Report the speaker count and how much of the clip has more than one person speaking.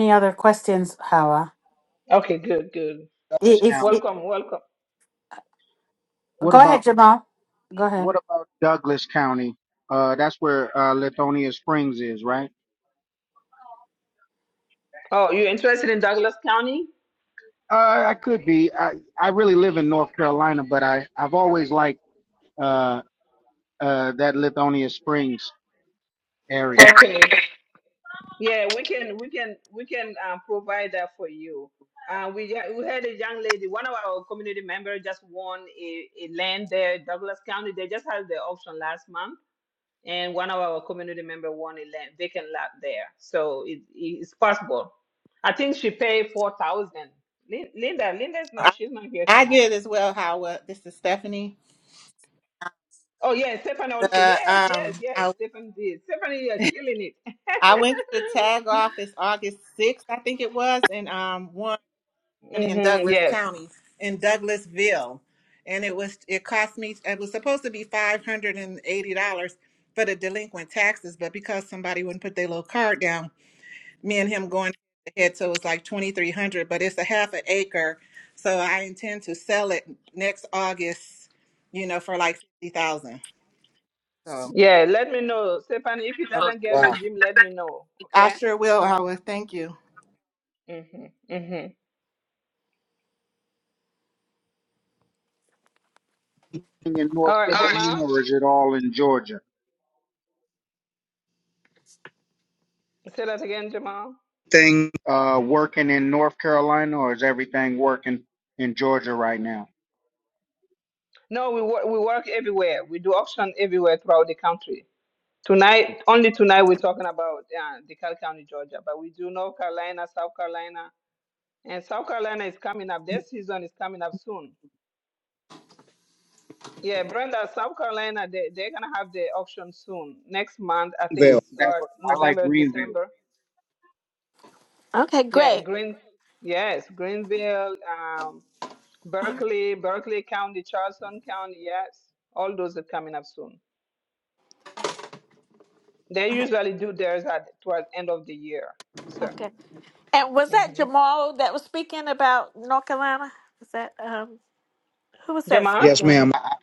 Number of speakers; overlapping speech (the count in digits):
5, about 6%